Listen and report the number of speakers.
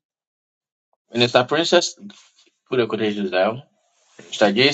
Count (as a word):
one